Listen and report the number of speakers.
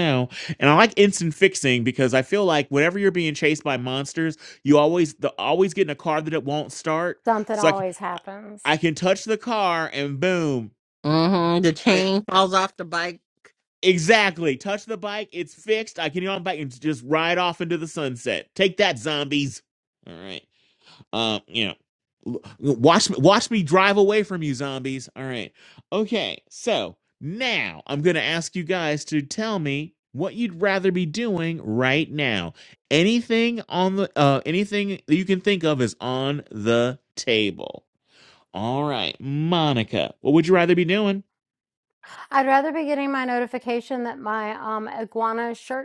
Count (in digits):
3